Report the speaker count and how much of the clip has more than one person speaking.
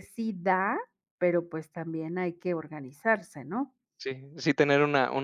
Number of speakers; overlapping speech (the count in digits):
2, no overlap